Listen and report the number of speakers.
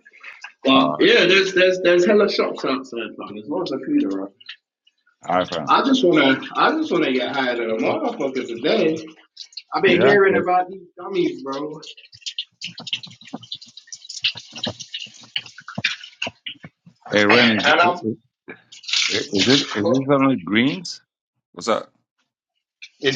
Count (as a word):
two